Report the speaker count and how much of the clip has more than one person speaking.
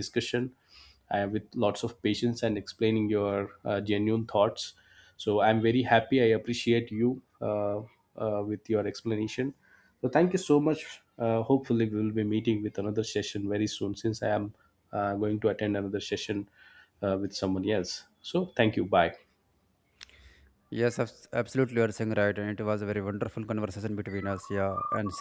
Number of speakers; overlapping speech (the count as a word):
two, no overlap